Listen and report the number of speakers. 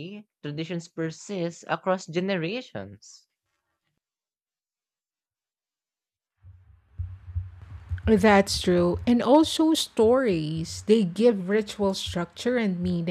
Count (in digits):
2